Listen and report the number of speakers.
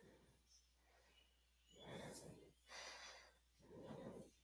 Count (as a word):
zero